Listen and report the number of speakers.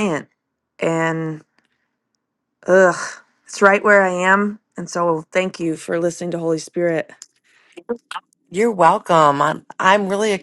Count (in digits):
2